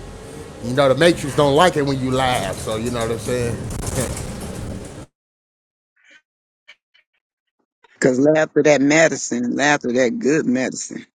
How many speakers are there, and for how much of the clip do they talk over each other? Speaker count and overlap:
two, no overlap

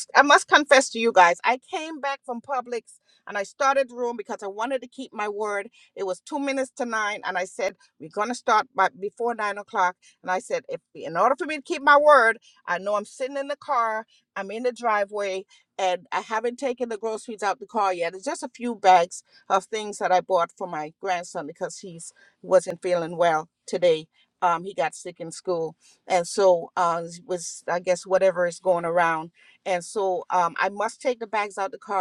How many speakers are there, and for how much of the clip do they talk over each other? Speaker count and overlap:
one, no overlap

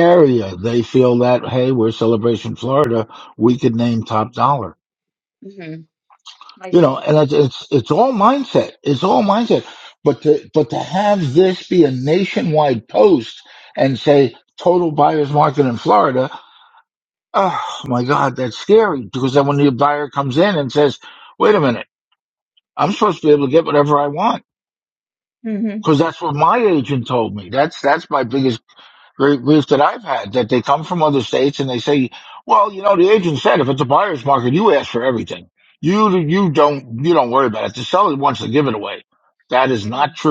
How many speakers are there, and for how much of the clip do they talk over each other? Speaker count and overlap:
two, about 1%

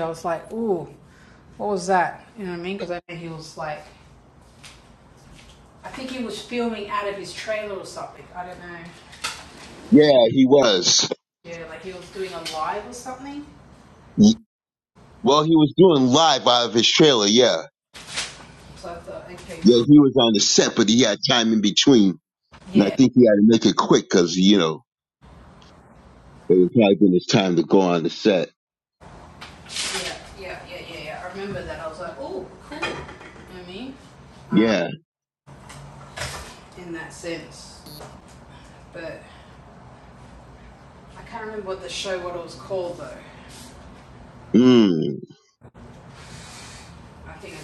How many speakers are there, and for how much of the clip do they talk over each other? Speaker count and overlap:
two, about 1%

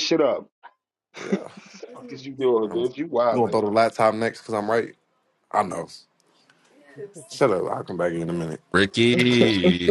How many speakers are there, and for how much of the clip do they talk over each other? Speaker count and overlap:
three, about 4%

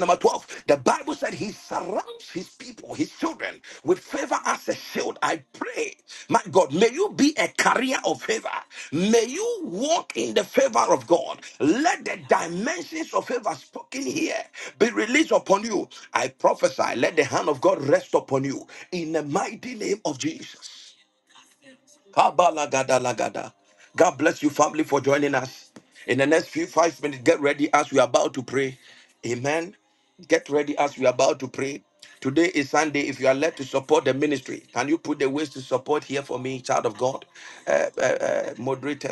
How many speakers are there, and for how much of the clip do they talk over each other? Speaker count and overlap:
one, no overlap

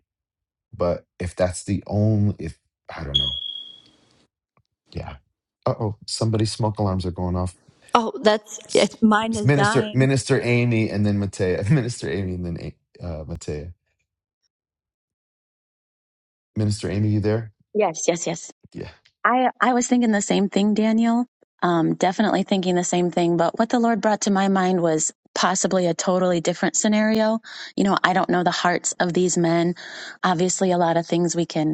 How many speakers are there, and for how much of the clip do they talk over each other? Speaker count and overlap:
three, about 3%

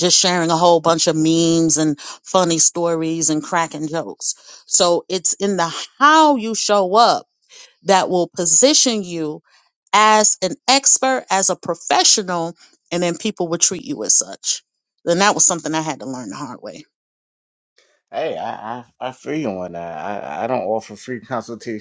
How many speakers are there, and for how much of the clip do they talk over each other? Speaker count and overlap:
two, no overlap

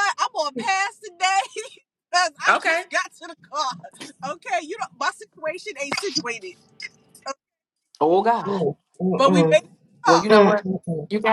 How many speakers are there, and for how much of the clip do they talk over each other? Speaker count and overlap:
three, about 13%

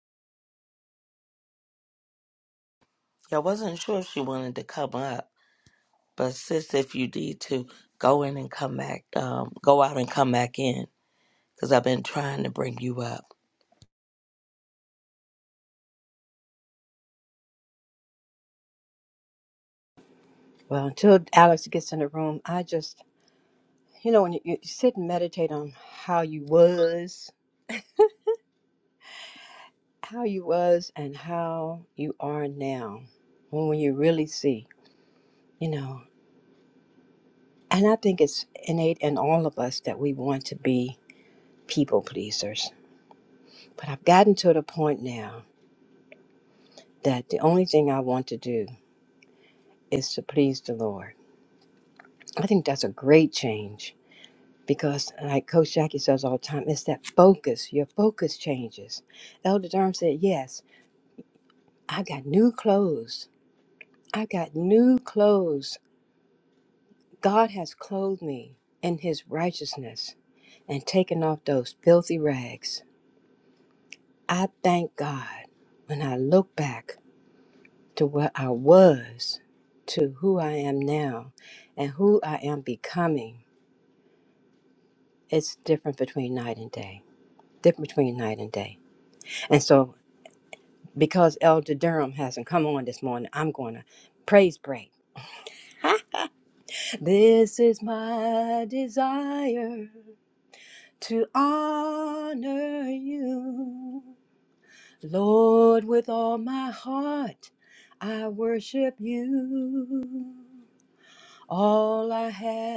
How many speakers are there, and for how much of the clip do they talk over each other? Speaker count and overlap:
two, no overlap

